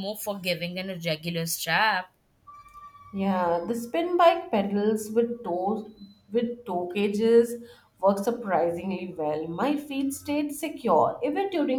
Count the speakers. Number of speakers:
two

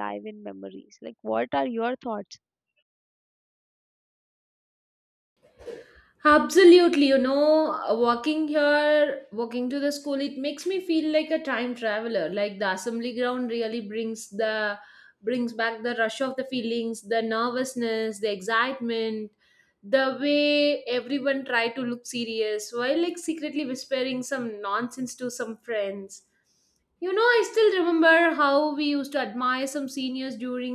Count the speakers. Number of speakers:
two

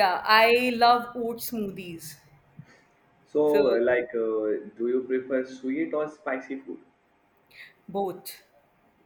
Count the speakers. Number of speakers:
two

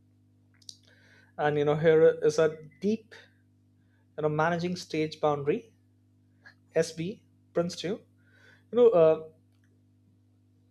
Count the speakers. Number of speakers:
one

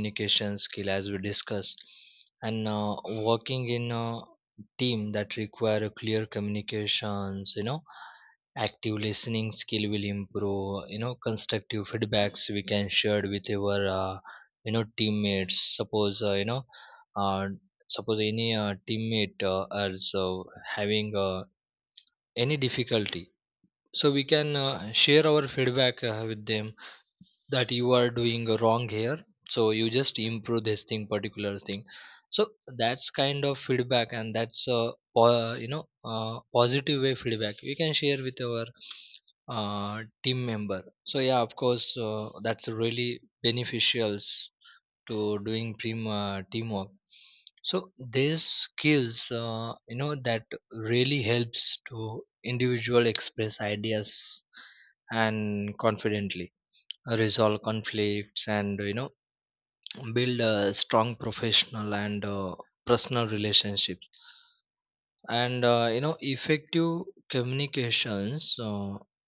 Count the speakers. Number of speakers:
one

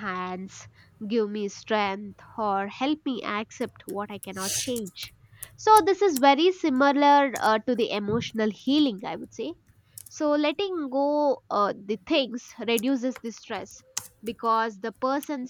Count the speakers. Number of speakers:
one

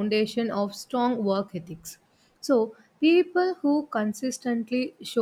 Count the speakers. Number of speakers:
one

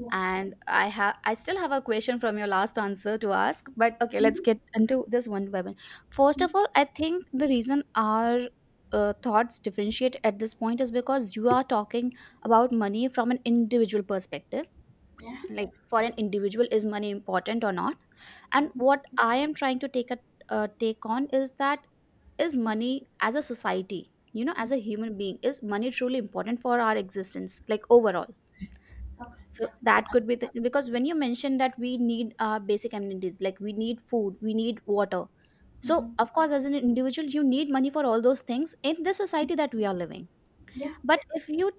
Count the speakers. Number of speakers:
two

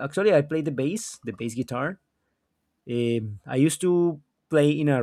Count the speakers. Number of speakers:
one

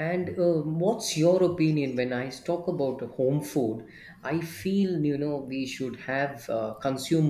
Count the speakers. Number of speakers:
one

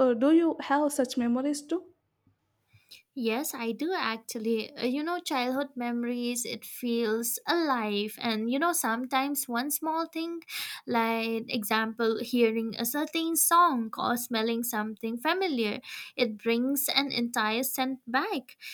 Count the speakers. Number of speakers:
two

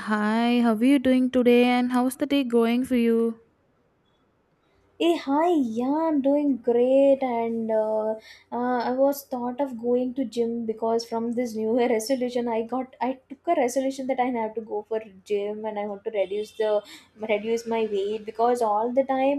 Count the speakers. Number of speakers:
two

